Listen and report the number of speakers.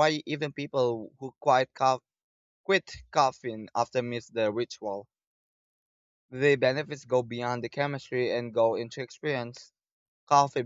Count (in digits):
1